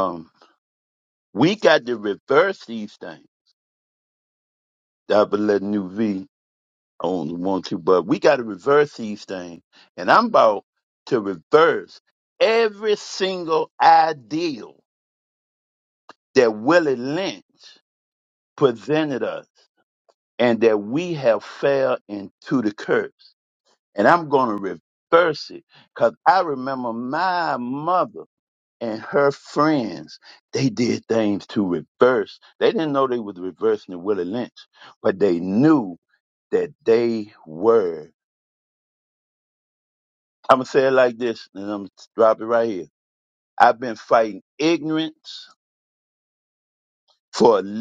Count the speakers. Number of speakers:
1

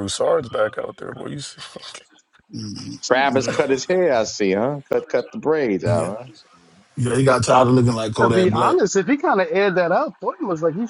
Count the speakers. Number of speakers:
4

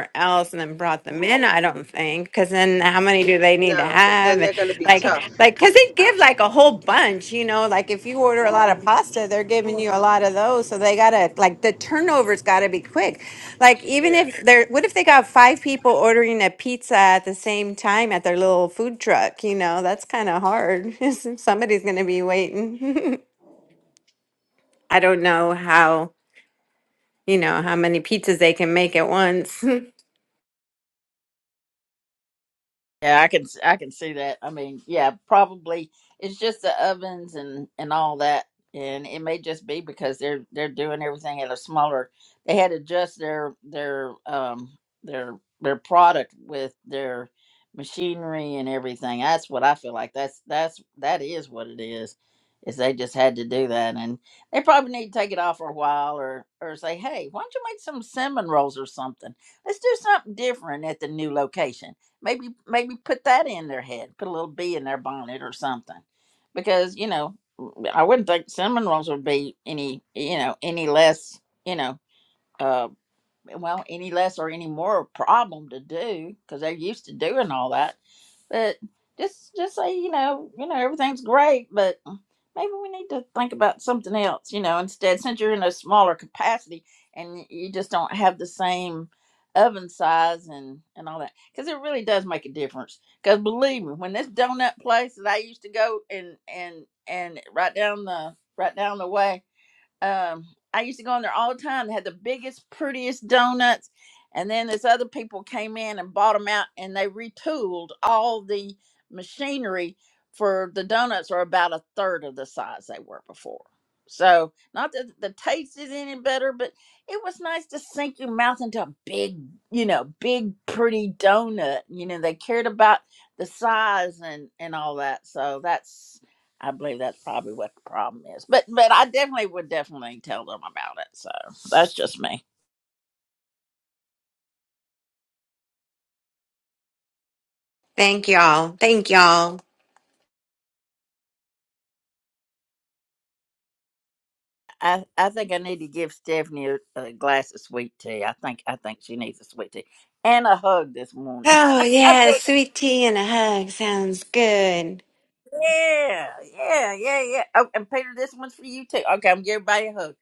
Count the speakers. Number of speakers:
3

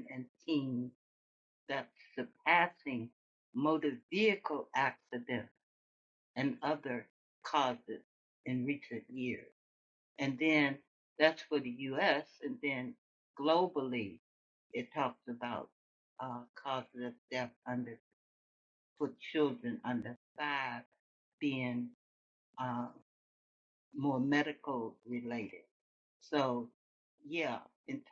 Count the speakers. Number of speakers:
1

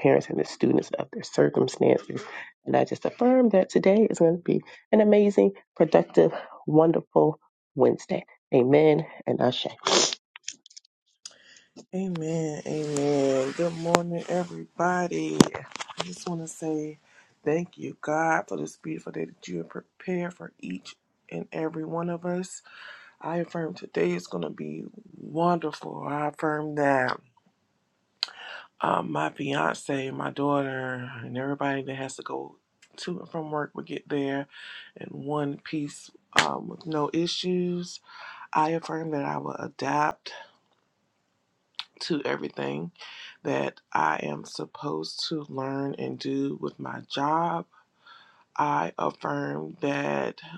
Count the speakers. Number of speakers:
2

